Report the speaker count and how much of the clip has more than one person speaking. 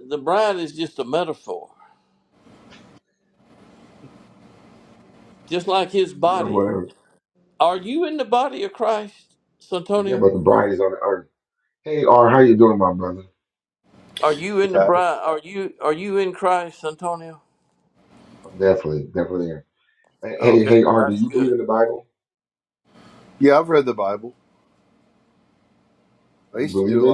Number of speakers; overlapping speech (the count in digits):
3, about 10%